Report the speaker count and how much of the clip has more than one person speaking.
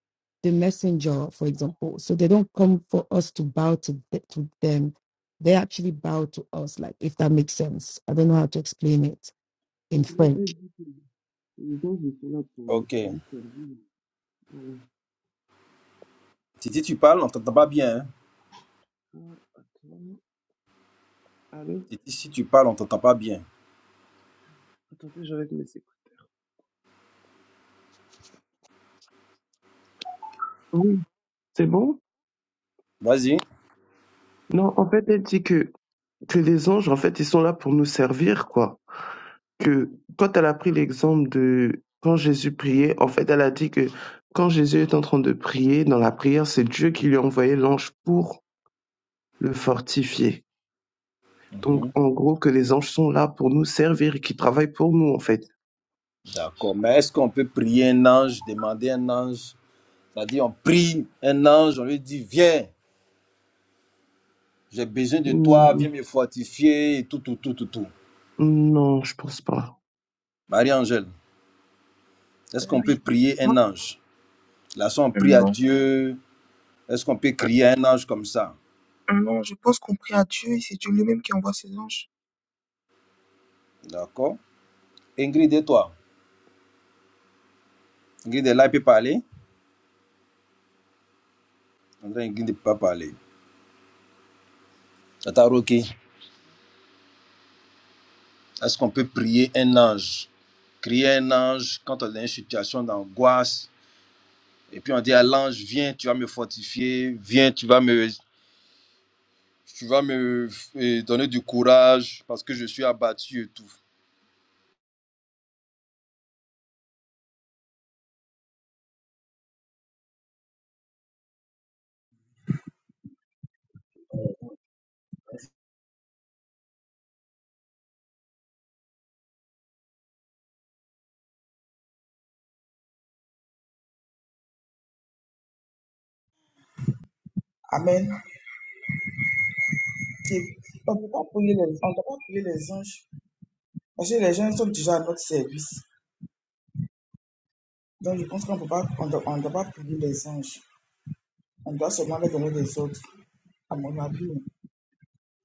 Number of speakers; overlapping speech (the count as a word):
five, about 2%